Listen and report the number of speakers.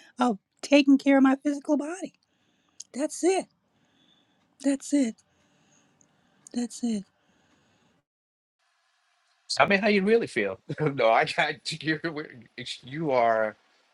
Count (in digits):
2